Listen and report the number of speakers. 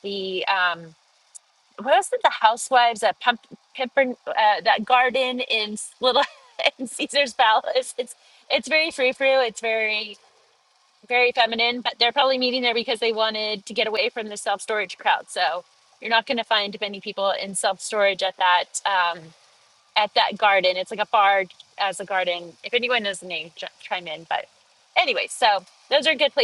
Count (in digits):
1